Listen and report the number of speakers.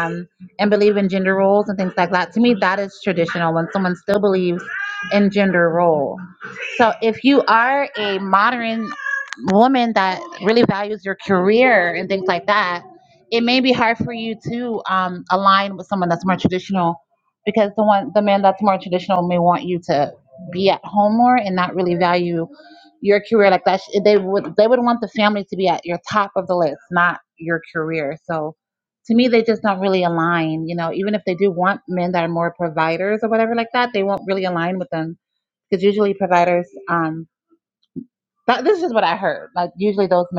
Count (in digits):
1